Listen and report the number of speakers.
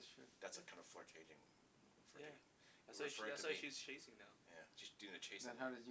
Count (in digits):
3